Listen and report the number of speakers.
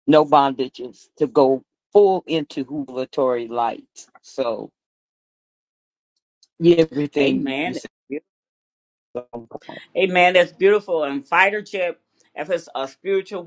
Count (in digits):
2